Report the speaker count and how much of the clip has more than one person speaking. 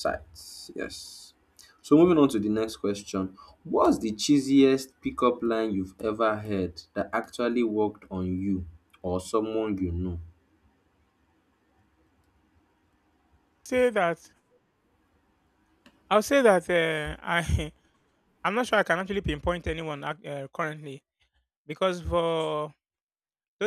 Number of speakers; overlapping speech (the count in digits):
2, no overlap